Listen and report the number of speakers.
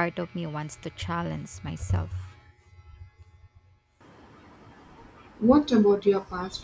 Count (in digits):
2